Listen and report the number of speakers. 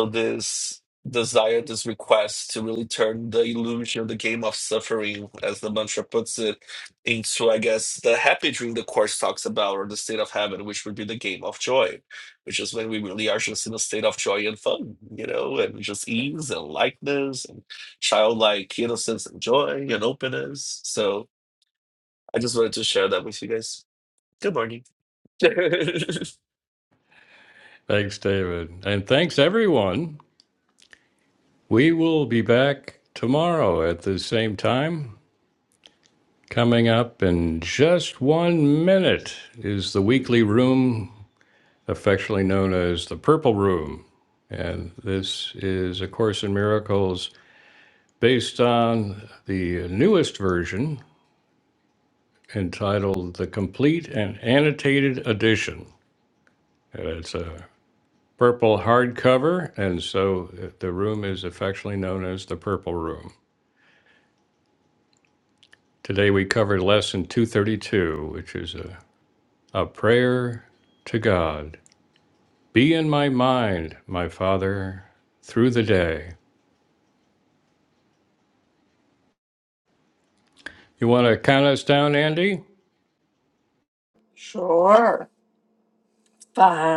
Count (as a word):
three